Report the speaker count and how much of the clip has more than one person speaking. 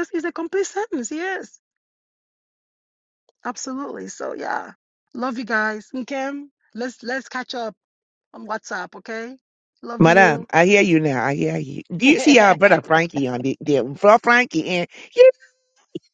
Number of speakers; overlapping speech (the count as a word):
two, about 4%